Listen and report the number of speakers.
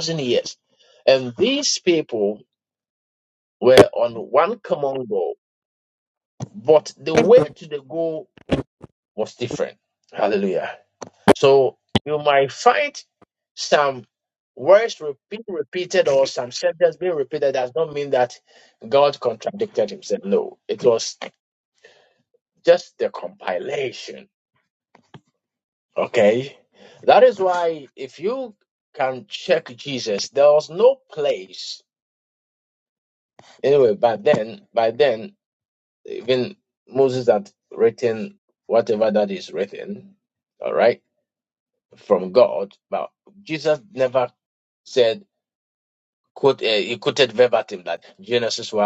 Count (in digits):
1